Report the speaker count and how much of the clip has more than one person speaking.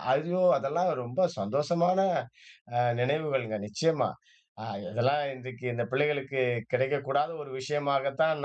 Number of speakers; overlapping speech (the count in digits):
1, no overlap